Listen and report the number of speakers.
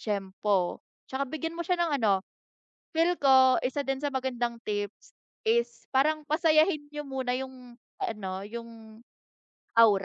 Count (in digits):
1